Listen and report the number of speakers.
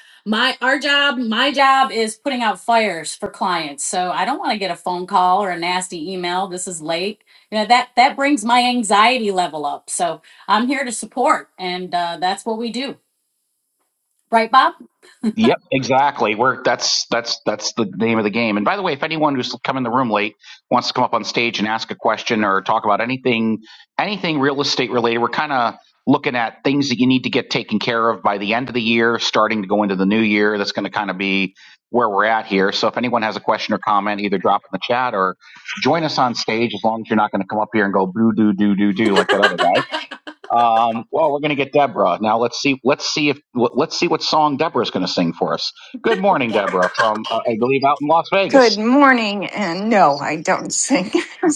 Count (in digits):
3